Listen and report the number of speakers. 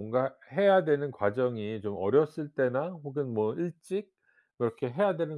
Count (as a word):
one